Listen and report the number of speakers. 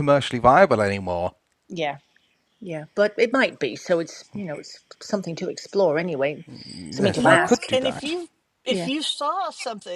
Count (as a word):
three